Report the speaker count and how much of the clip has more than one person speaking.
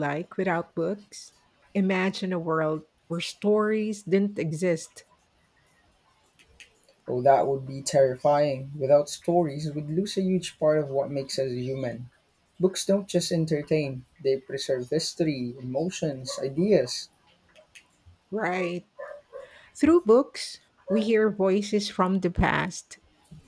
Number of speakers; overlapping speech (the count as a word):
two, no overlap